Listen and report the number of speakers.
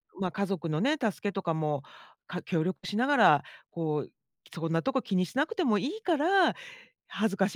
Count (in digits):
1